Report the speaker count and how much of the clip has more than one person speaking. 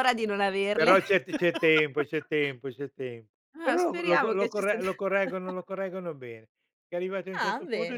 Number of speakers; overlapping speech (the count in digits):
2, about 26%